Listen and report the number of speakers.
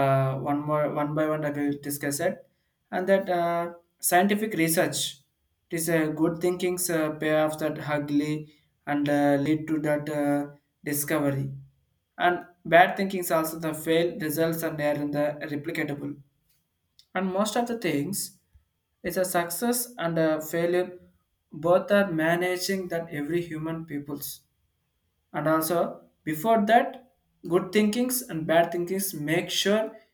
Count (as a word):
one